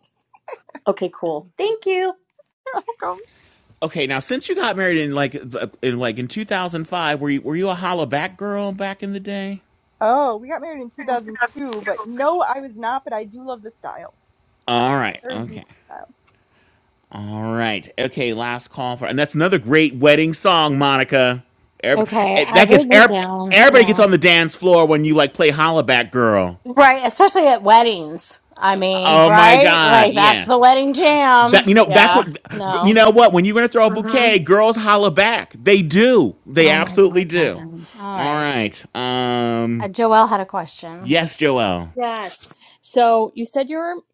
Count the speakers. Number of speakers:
five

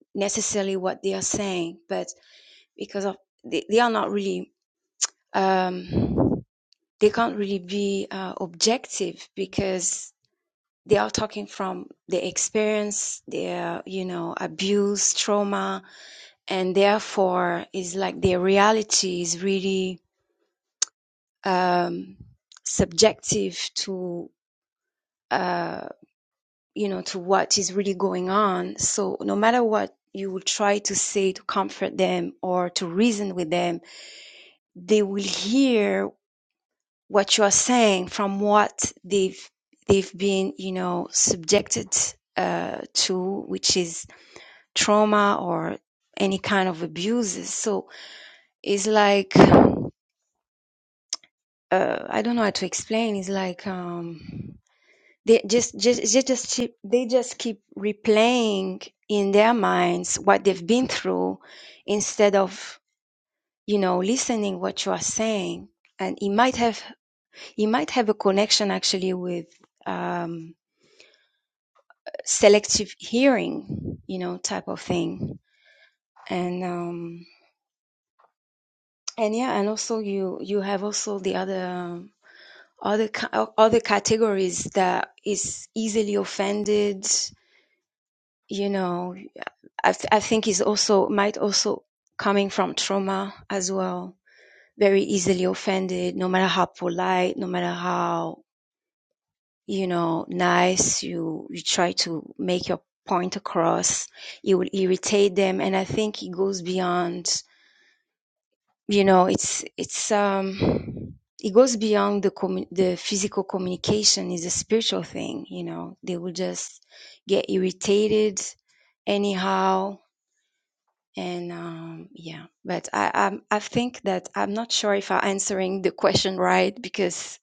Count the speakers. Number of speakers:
one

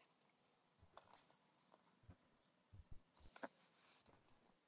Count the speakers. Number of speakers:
zero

